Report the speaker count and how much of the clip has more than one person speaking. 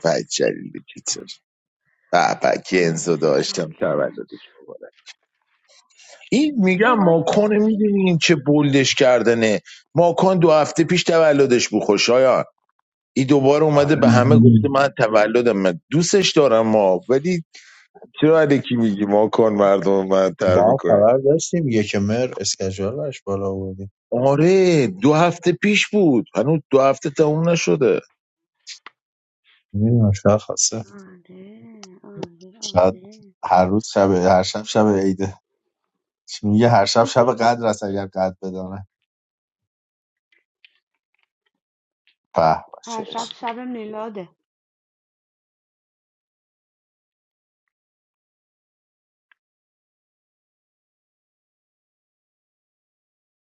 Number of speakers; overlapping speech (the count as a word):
three, about 6%